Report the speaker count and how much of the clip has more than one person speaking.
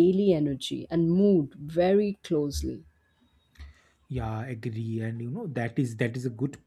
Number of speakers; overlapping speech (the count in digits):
2, no overlap